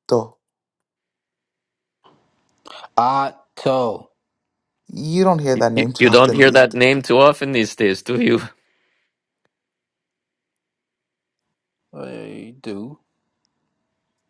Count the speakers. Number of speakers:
3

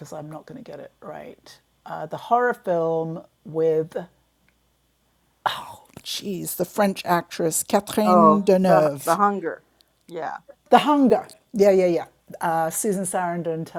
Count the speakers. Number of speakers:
2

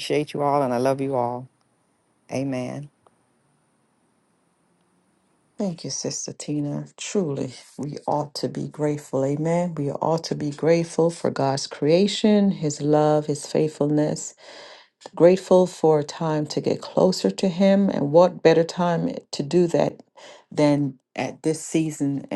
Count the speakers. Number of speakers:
2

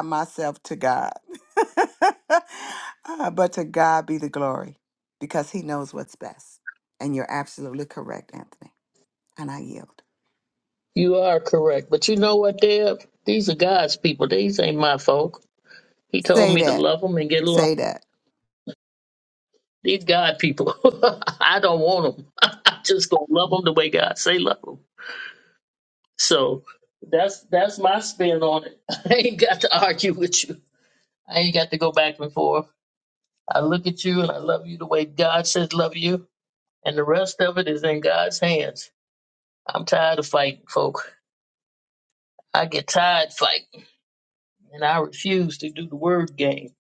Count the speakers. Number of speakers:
2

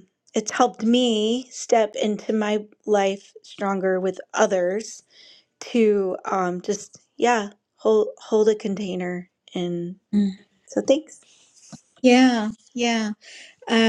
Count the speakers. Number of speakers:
2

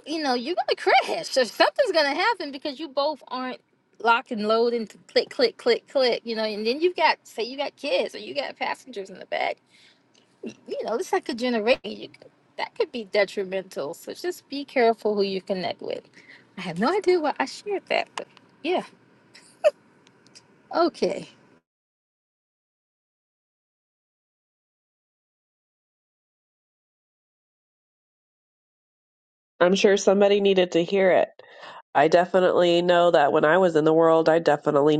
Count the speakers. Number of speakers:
2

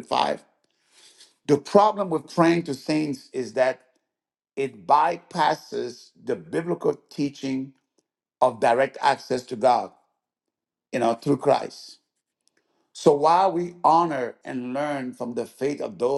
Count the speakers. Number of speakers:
1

